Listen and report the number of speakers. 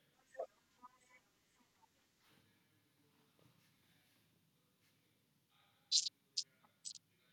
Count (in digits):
0